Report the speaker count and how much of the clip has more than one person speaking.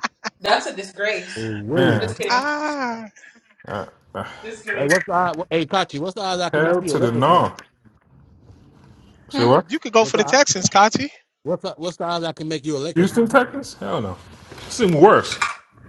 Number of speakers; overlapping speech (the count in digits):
4, about 15%